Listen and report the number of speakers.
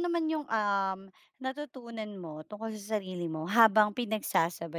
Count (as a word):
one